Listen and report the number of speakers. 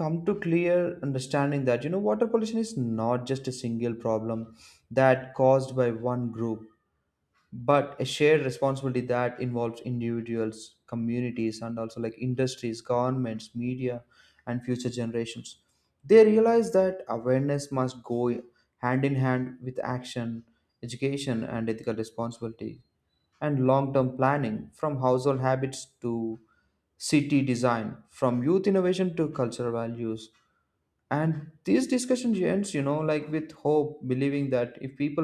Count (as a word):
one